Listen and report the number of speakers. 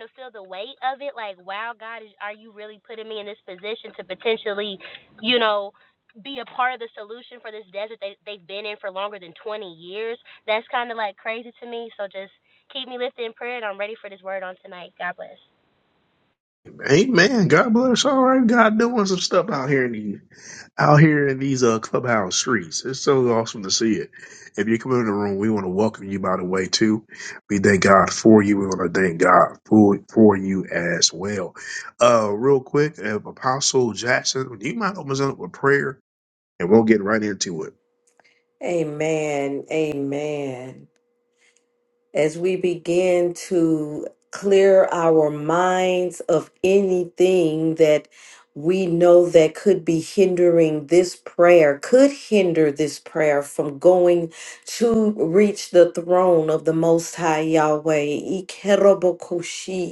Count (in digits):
3